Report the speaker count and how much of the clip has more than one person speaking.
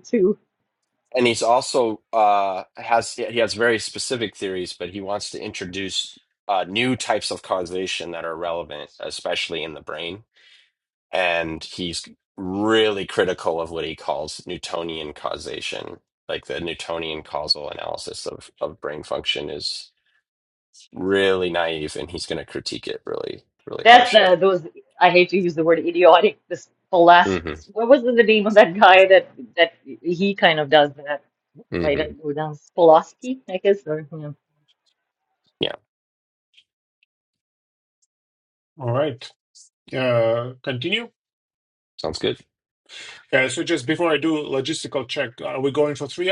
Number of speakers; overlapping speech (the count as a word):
three, about 2%